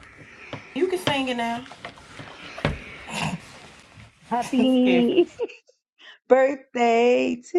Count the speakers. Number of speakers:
two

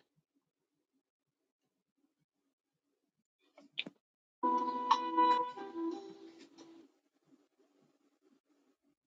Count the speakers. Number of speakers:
zero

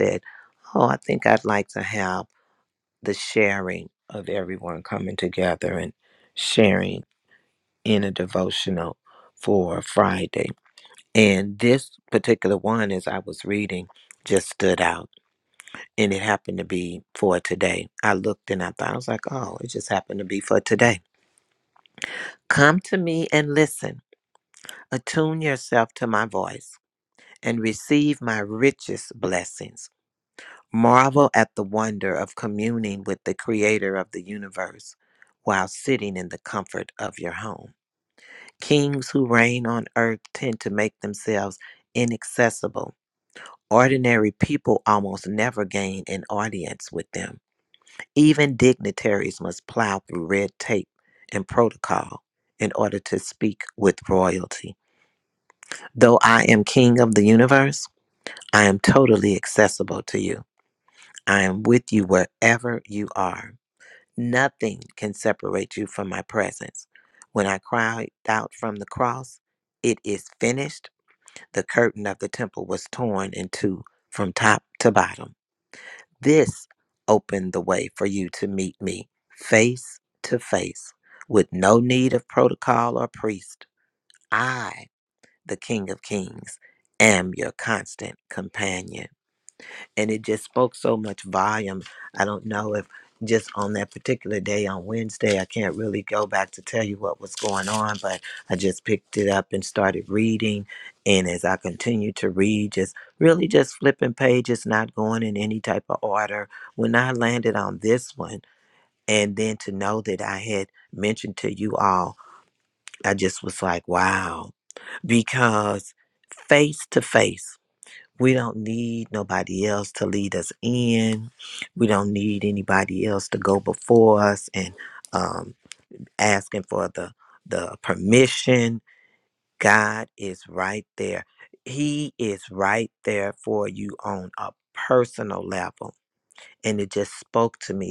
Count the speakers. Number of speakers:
one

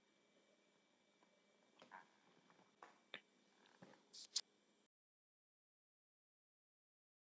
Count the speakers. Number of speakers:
zero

